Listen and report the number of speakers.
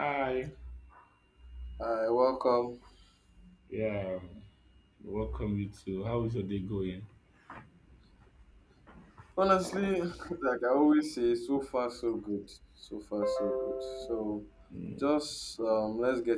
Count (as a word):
two